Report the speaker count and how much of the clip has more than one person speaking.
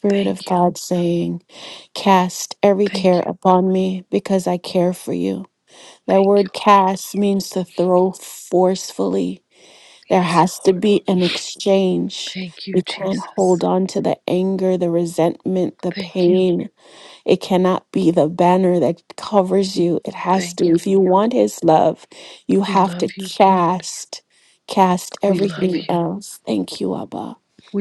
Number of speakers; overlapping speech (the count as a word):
two, about 23%